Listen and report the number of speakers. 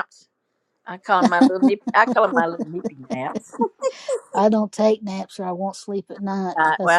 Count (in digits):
2